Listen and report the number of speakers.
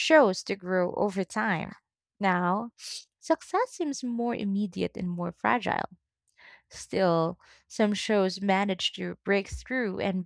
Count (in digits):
1